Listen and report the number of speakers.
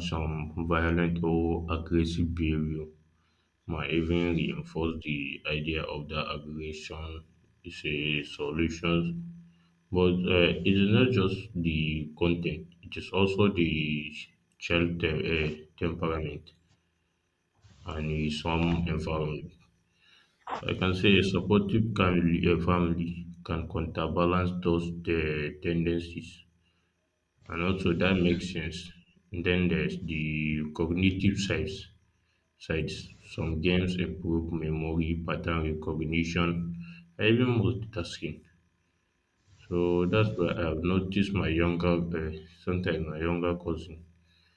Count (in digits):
1